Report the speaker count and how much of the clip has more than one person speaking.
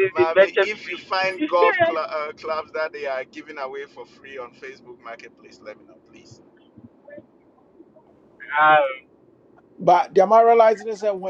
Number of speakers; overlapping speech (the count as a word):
three, about 8%